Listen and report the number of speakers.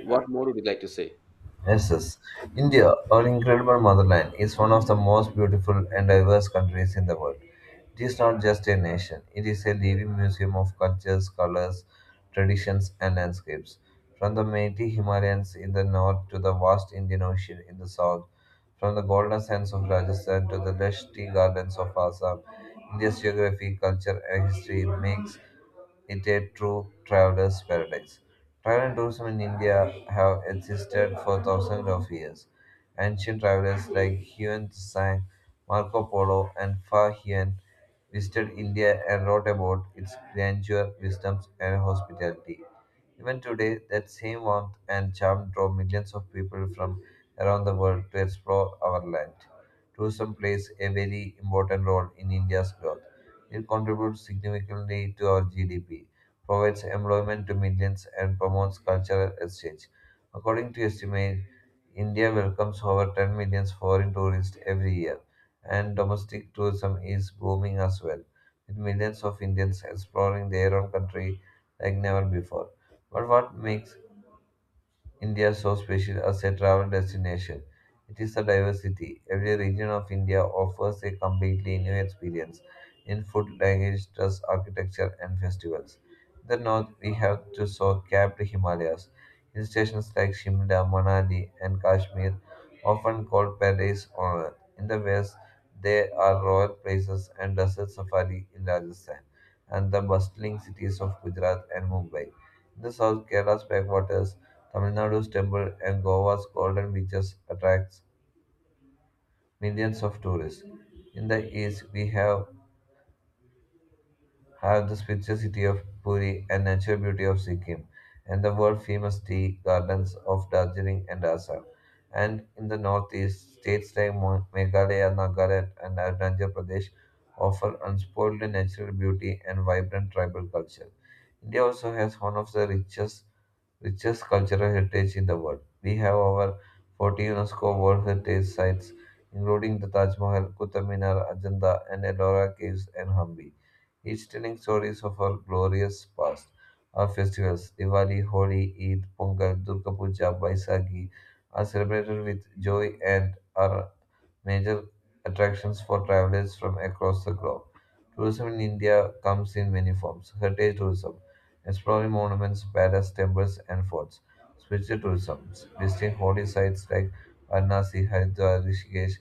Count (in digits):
2